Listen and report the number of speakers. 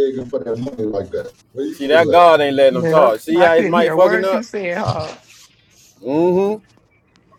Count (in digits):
3